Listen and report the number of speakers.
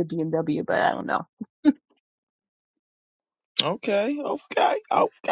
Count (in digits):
2